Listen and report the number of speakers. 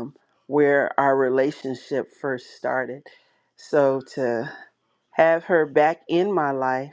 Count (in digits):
1